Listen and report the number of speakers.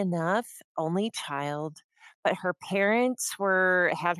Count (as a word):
one